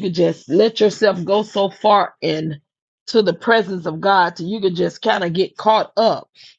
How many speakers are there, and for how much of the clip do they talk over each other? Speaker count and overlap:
1, no overlap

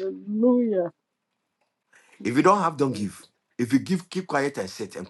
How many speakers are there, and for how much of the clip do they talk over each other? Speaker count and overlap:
2, about 11%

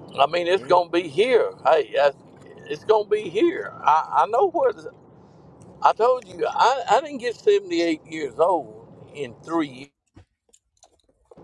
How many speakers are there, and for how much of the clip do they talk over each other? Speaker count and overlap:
1, no overlap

